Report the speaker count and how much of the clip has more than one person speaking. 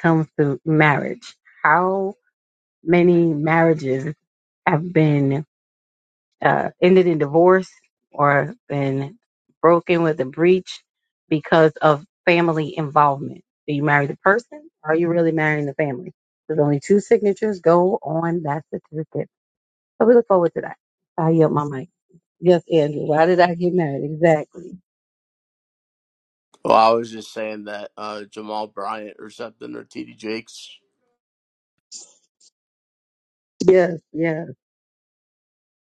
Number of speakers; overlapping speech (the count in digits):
2, no overlap